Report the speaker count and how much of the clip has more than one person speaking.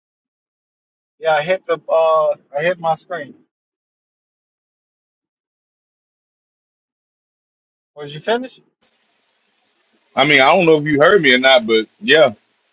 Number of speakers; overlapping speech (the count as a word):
two, no overlap